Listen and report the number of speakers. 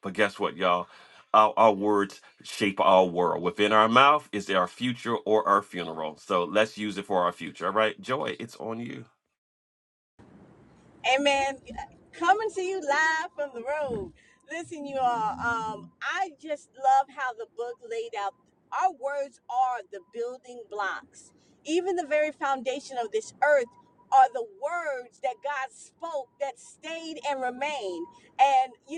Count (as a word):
two